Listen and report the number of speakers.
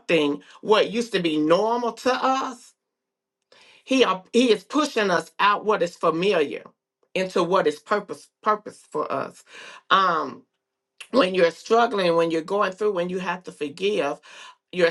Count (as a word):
one